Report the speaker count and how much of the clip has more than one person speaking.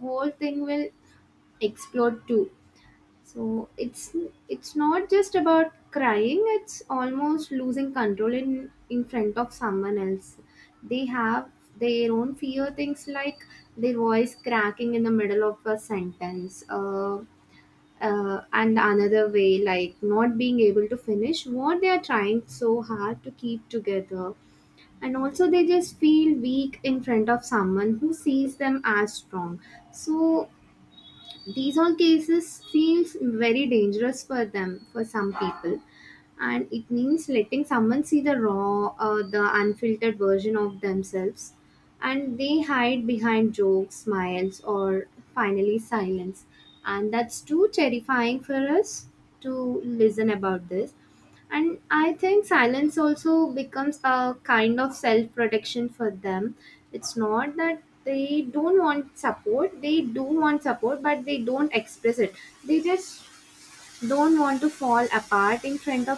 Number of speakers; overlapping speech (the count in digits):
1, no overlap